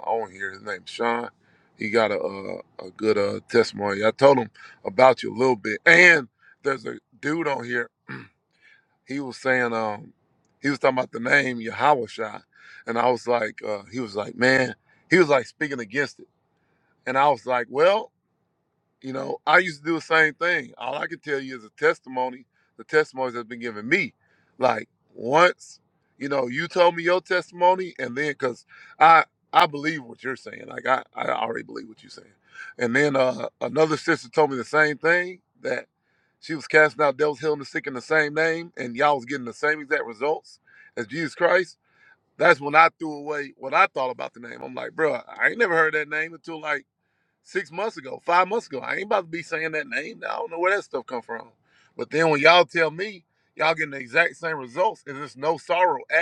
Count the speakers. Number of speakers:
1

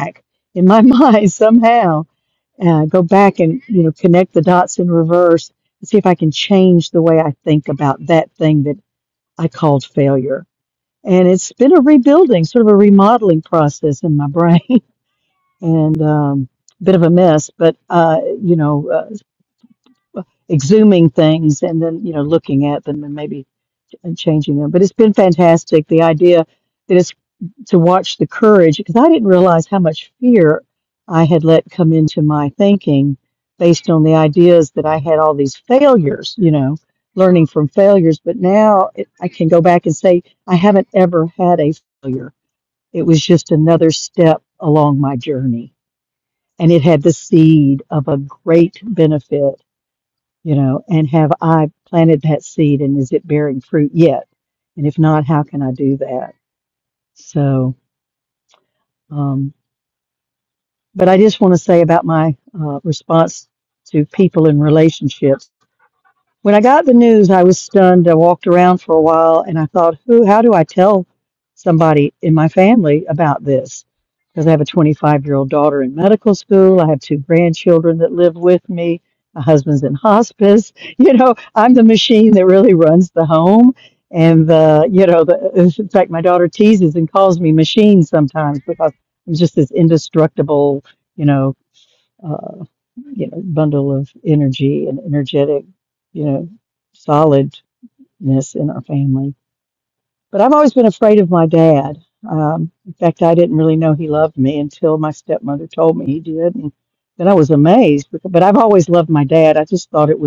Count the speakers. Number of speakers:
1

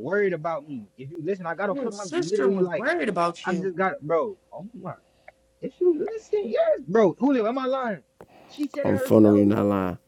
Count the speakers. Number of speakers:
3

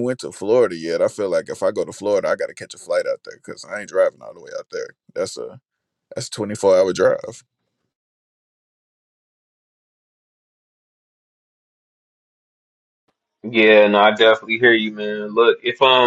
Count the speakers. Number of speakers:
2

